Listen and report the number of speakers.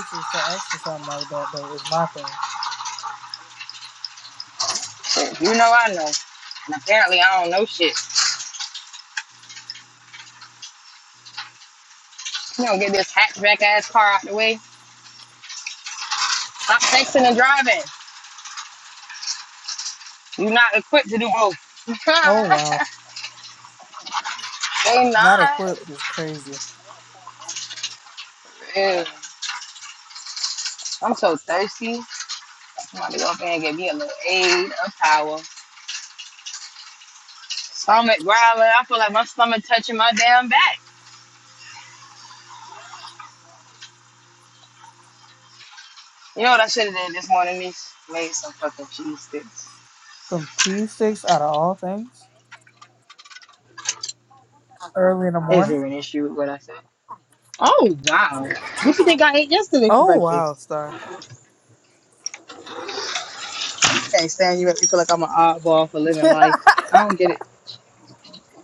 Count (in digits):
2